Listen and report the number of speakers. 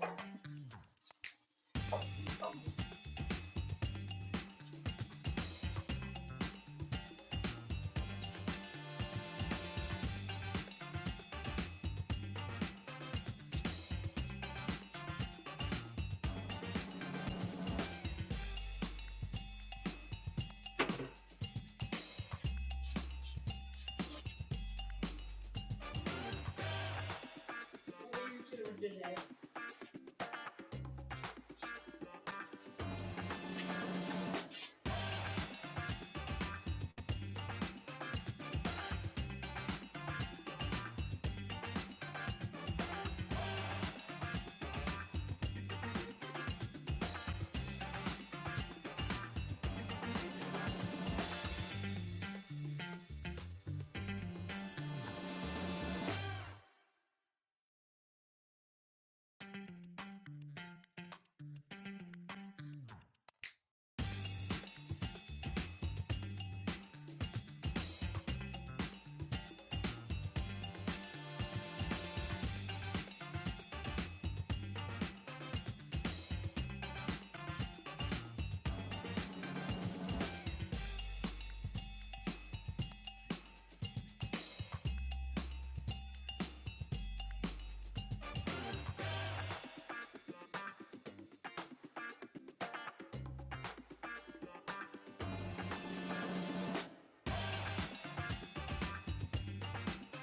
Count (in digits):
0